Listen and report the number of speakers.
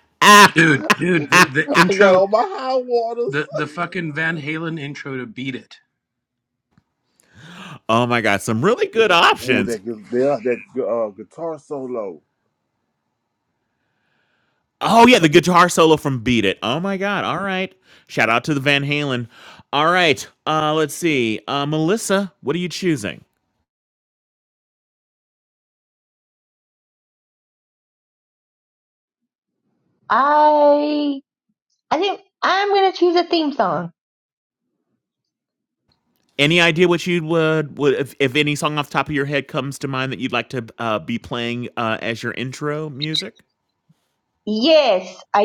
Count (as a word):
four